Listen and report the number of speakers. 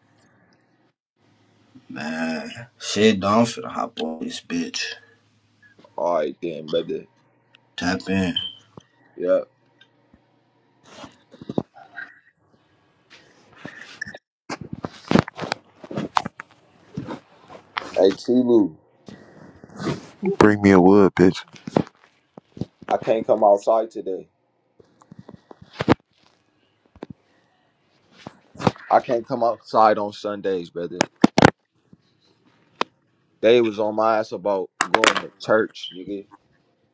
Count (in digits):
3